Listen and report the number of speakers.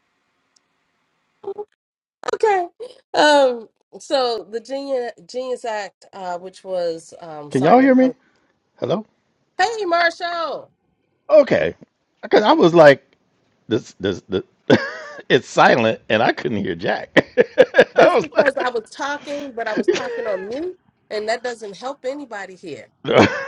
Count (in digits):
2